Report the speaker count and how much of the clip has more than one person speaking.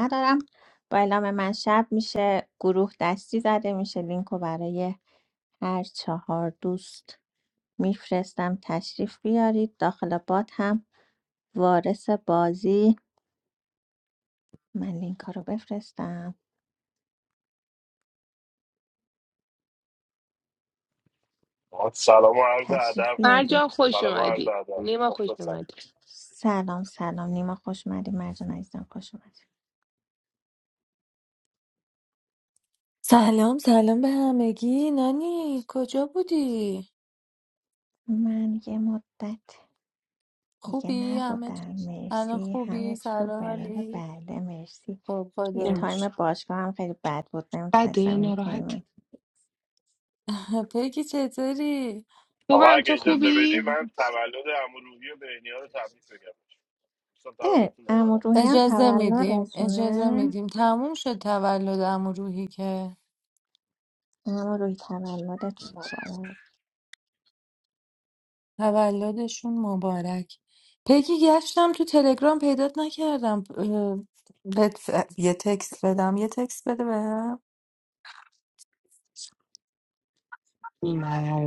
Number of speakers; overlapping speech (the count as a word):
four, about 12%